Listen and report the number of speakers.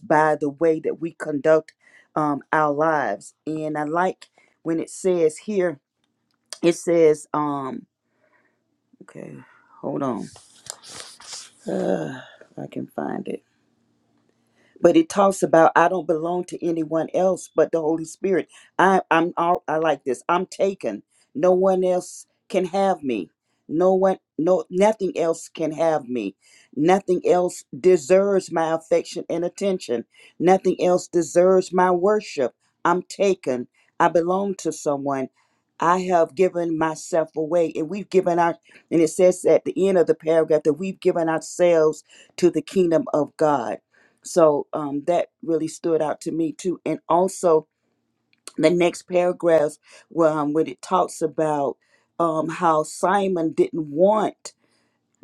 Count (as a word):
one